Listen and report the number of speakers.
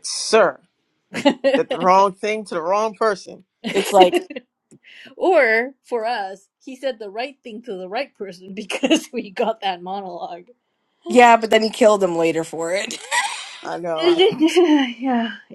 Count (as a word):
three